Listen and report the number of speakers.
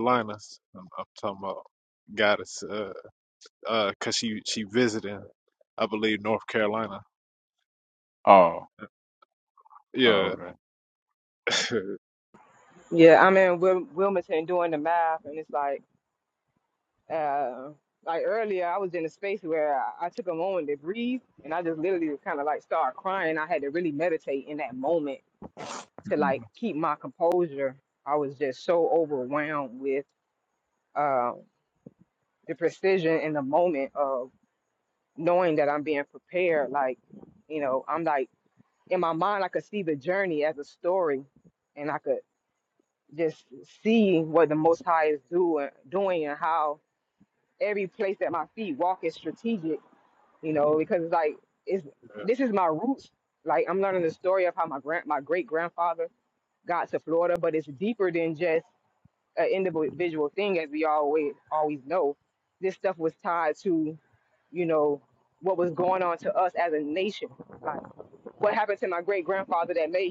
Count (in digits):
3